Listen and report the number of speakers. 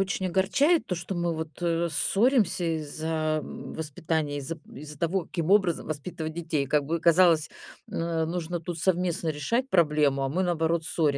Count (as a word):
one